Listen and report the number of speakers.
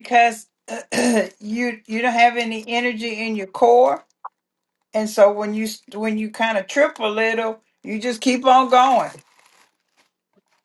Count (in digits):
1